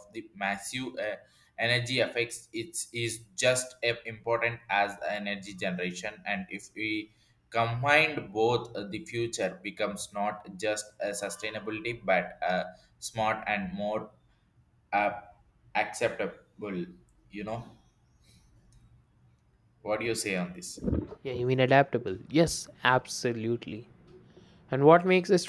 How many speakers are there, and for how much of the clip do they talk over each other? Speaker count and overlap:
2, no overlap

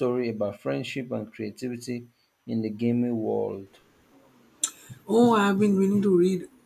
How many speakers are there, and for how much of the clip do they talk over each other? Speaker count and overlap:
2, no overlap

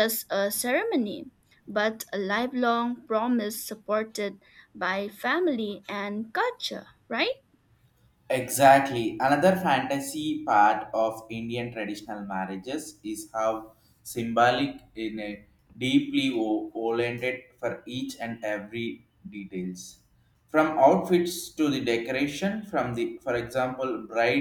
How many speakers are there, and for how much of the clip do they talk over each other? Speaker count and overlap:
2, no overlap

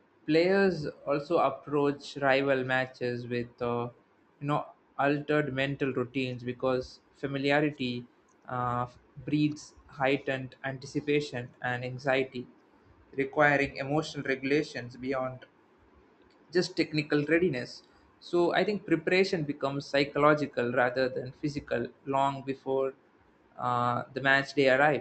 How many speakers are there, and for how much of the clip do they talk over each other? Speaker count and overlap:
1, no overlap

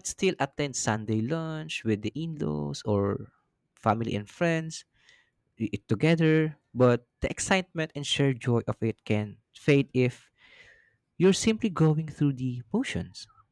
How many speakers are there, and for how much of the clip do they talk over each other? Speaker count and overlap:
1, no overlap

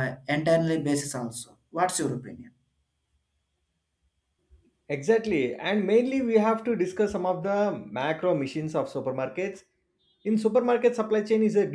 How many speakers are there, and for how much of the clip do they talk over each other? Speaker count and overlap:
2, no overlap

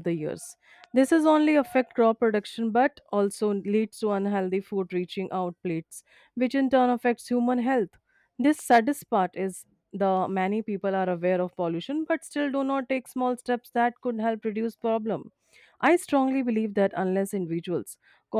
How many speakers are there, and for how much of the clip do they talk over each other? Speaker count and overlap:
1, no overlap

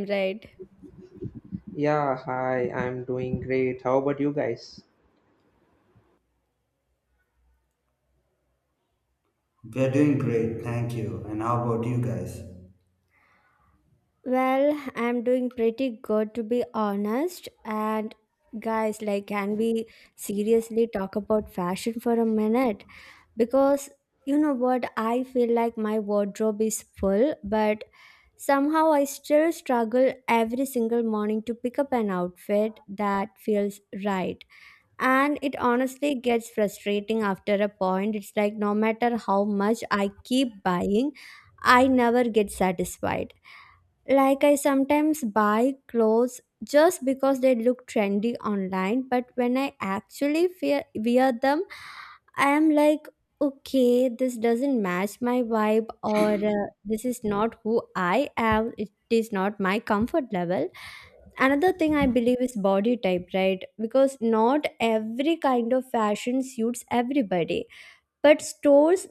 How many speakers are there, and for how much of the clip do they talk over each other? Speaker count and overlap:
3, no overlap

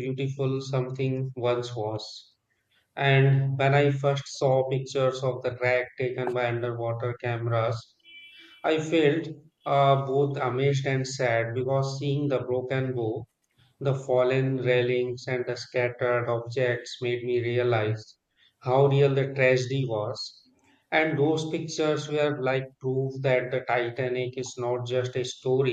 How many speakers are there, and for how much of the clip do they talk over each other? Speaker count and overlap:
1, no overlap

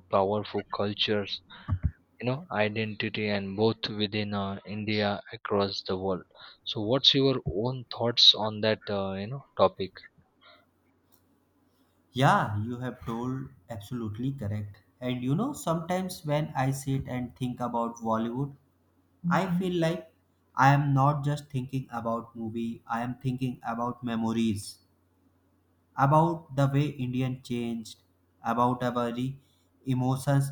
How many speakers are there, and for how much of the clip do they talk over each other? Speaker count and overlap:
2, no overlap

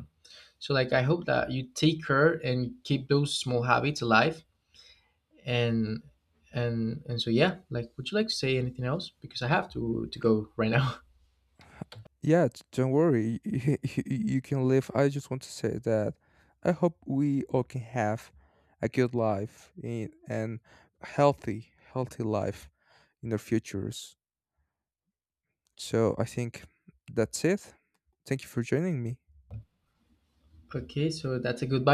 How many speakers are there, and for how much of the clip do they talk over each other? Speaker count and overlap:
2, no overlap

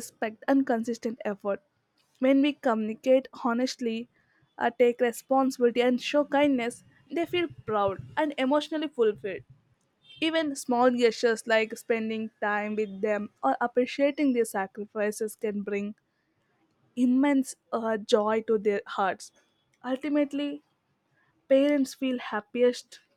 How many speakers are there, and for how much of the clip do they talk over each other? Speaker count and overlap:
1, no overlap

